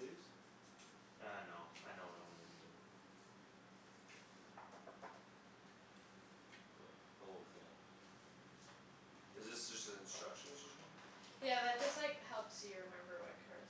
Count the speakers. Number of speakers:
three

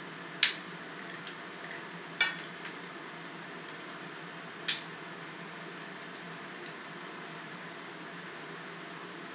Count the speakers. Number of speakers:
zero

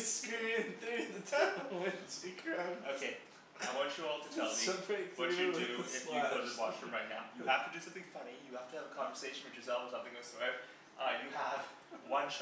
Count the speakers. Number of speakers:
two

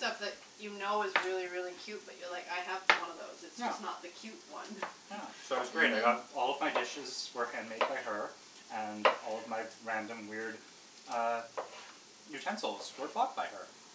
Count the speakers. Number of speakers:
two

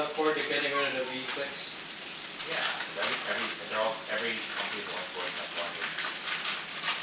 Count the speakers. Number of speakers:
two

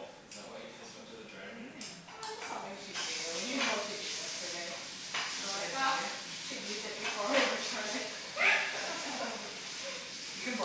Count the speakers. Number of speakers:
three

